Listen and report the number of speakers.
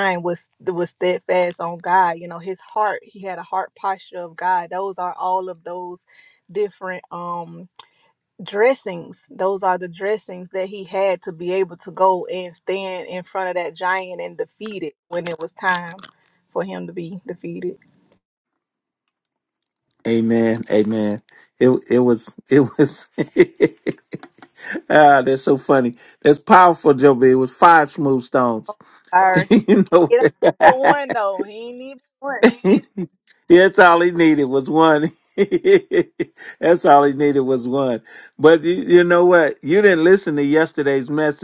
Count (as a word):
two